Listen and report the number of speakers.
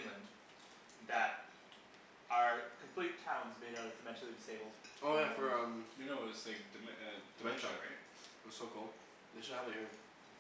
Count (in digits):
3